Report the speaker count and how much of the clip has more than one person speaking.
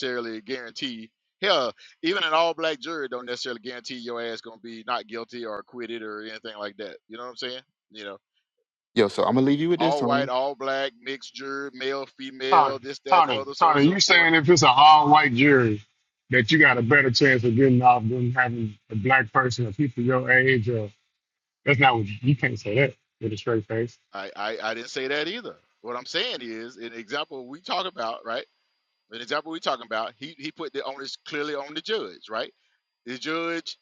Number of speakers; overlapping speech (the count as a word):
three, about 6%